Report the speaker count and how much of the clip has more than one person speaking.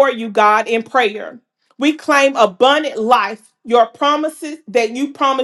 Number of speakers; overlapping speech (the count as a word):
one, no overlap